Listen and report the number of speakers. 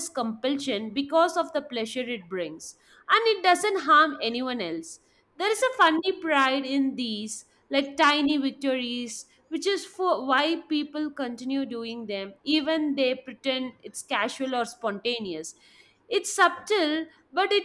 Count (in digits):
1